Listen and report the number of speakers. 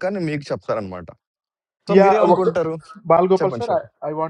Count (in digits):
2